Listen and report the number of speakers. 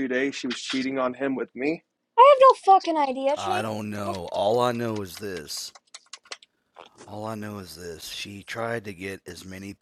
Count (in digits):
3